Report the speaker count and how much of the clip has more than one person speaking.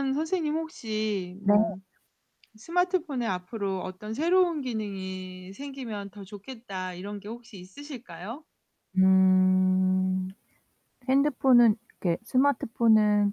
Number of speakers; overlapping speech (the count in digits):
2, about 1%